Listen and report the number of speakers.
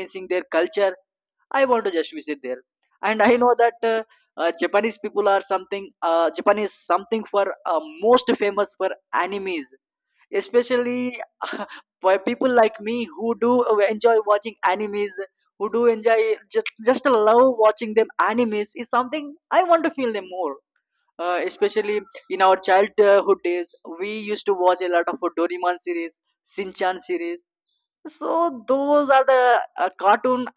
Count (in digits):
1